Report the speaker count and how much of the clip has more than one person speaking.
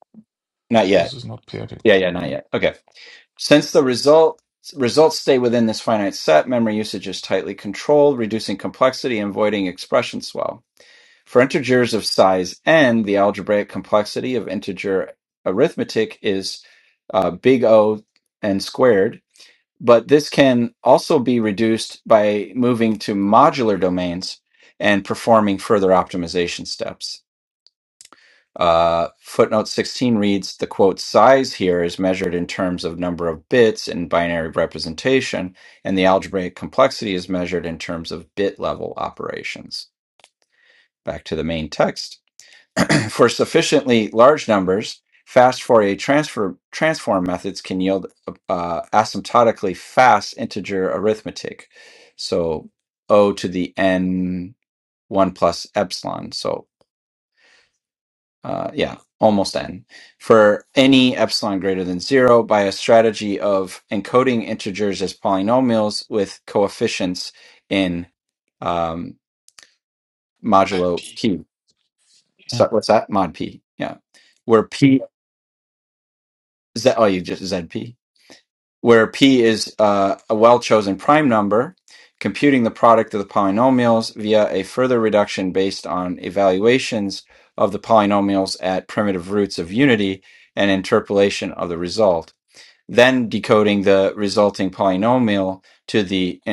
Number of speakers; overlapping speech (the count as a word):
two, about 1%